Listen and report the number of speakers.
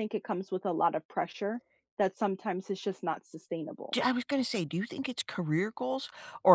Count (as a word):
two